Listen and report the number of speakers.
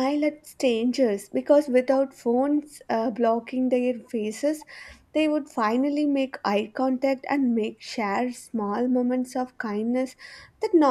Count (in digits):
1